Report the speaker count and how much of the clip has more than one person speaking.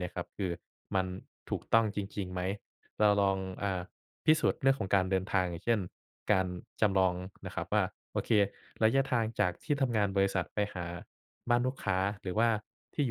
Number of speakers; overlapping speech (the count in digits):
1, no overlap